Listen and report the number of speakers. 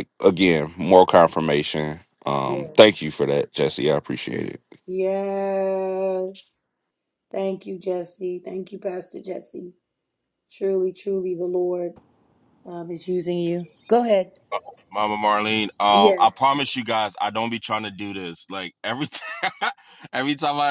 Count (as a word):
three